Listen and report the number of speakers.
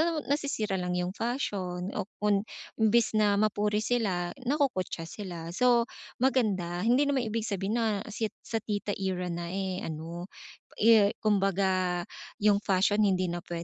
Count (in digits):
1